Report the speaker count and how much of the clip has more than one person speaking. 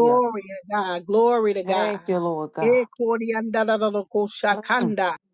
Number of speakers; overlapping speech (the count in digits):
2, about 22%